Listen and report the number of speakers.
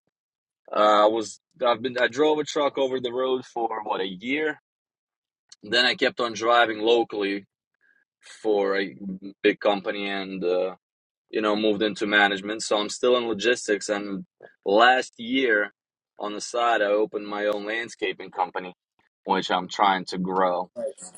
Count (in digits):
1